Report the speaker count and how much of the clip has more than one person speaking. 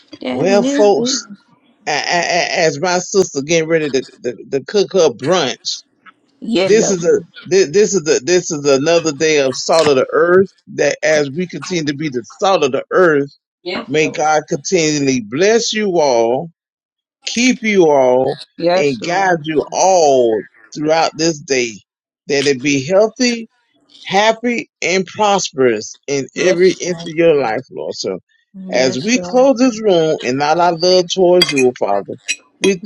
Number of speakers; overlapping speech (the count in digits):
2, about 11%